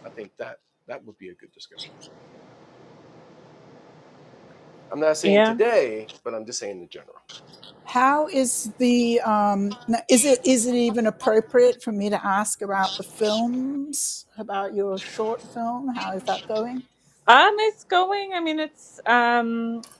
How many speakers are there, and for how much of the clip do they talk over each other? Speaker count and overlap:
three, about 2%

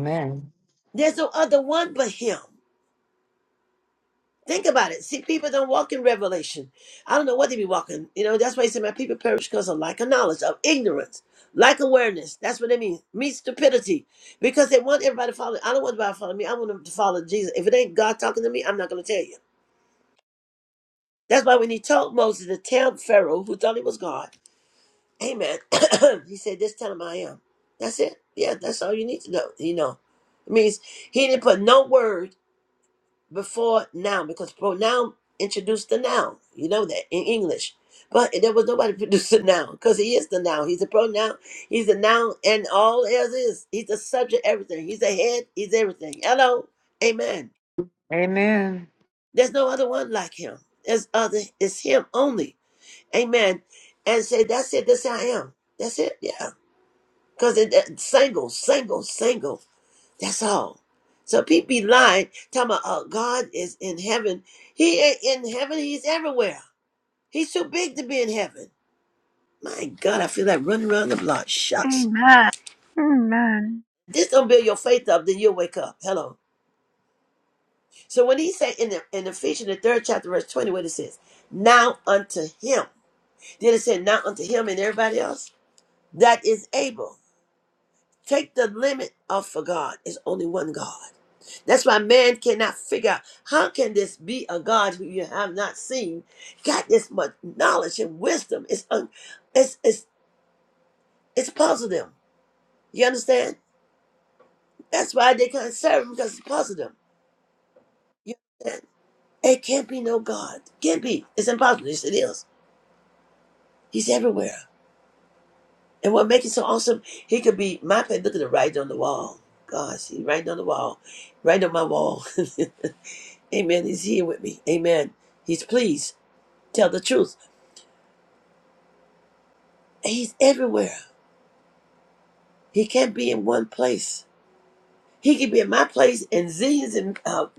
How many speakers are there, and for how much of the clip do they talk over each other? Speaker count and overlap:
three, under 1%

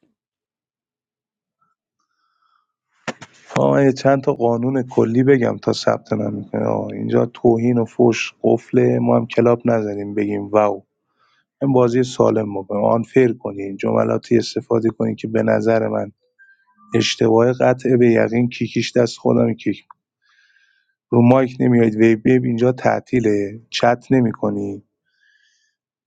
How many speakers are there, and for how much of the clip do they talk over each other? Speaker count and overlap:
one, no overlap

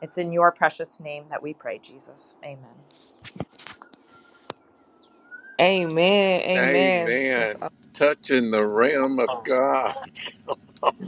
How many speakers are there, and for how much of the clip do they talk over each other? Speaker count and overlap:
three, about 11%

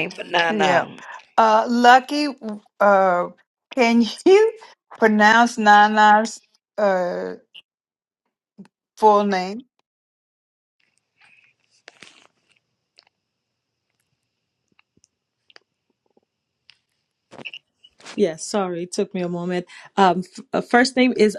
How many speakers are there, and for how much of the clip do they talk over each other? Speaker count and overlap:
three, about 2%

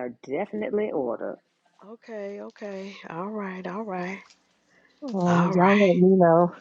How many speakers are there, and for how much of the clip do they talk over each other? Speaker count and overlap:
three, about 11%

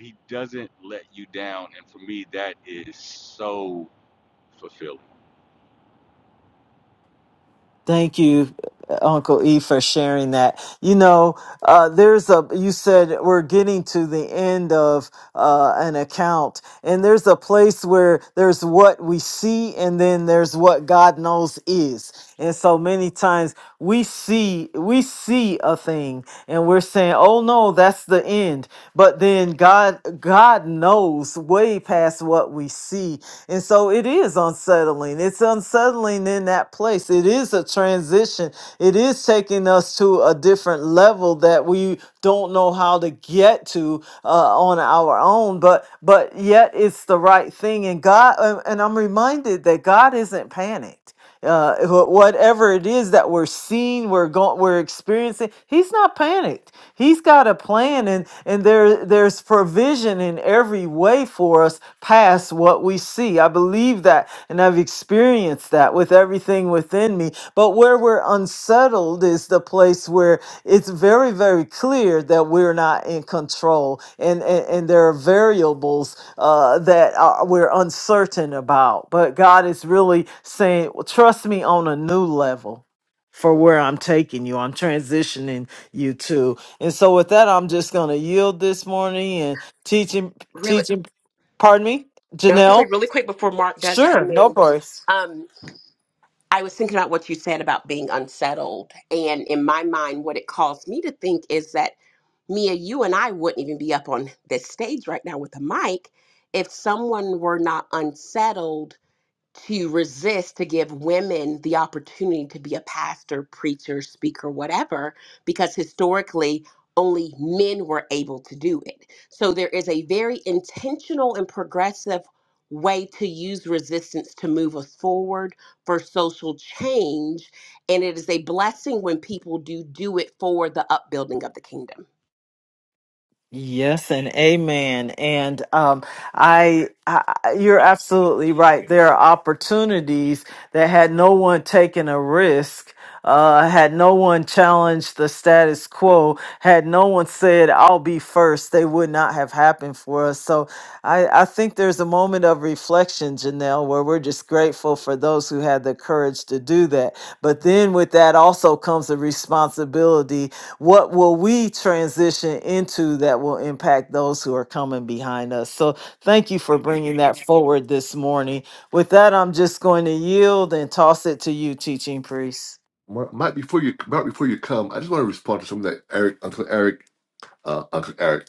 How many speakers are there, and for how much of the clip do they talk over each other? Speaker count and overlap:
four, about 1%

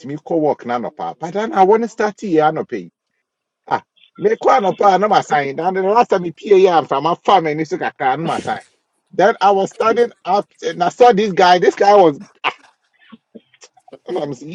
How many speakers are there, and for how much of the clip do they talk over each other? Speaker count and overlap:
one, no overlap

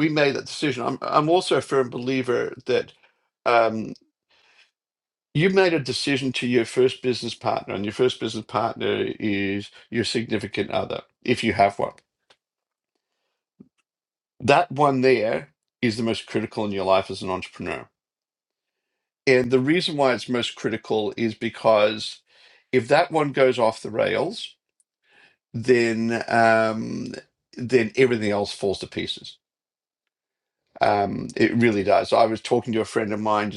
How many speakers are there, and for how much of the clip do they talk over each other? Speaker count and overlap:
one, no overlap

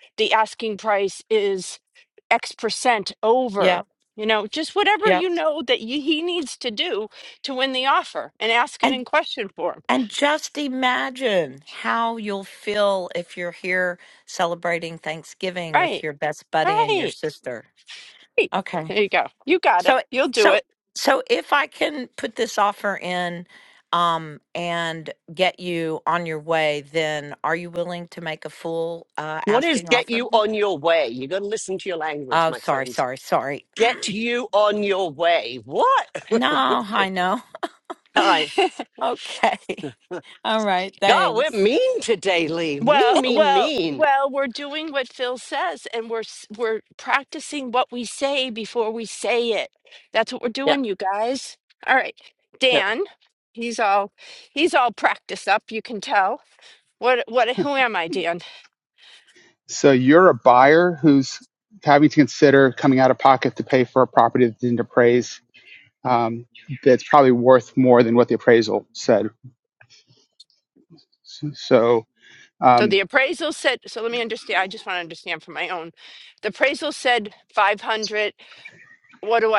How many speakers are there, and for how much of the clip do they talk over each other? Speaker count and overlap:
four, about 6%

